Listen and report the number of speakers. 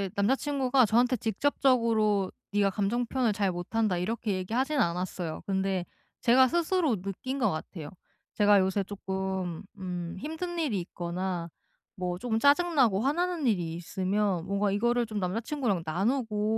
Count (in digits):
1